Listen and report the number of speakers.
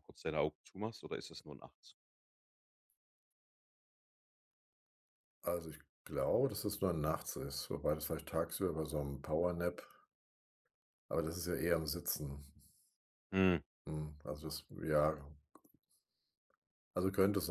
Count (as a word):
two